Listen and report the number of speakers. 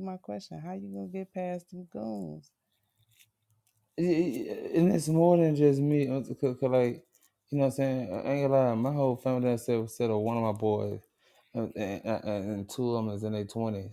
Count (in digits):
2